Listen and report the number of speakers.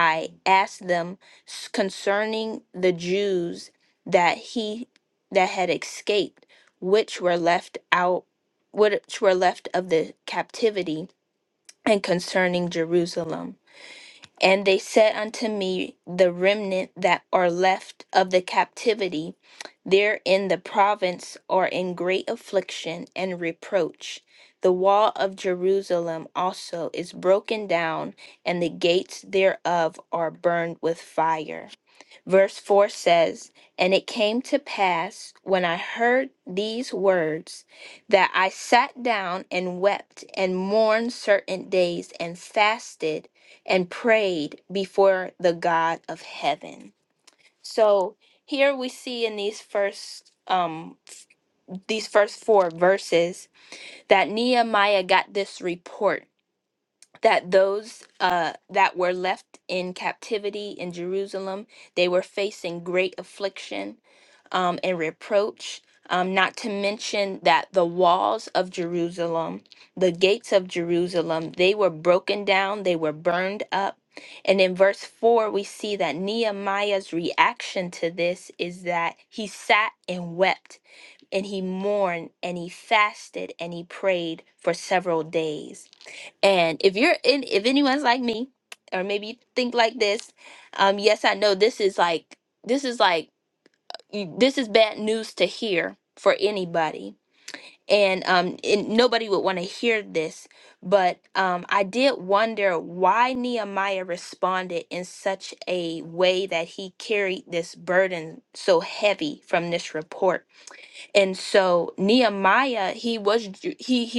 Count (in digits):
1